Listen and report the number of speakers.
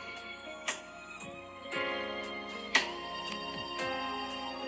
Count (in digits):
0